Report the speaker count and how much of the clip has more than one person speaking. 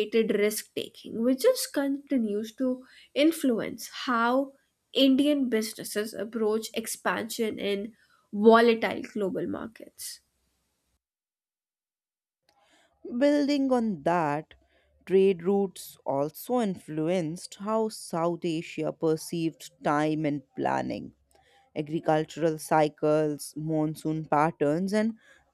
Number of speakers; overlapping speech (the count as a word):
two, no overlap